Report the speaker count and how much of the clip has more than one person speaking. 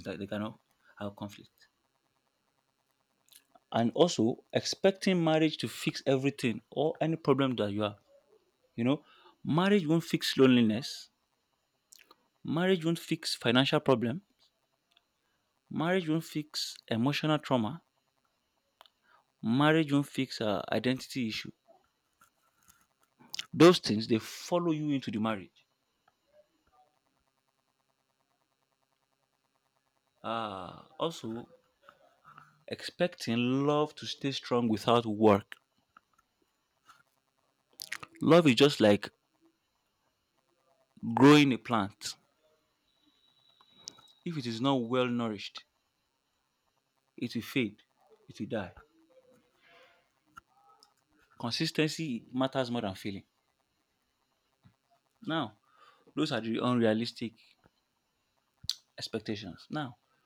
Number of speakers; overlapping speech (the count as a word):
one, no overlap